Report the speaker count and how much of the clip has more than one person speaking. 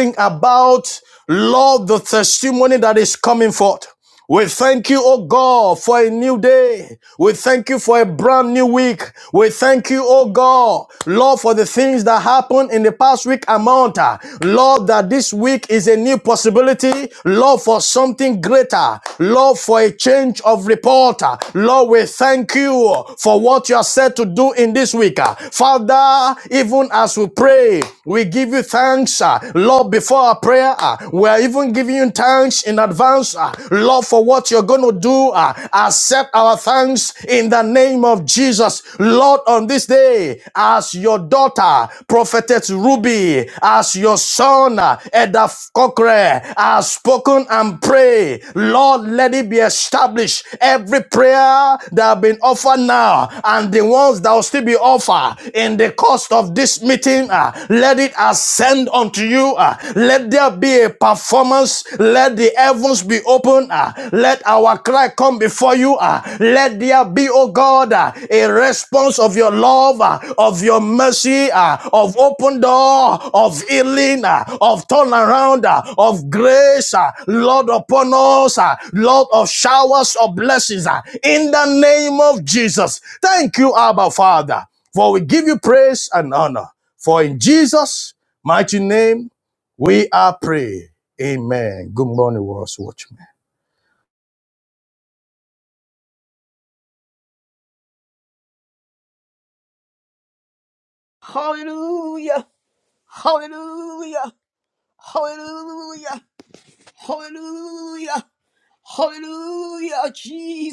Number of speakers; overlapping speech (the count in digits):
2, no overlap